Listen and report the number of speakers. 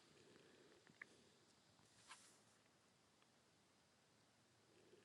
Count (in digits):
0